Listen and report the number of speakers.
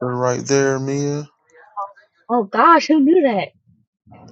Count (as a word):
two